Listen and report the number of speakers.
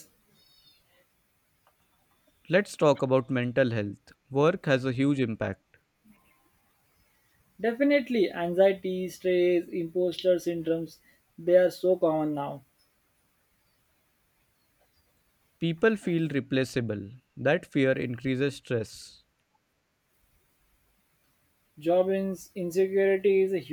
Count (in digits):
2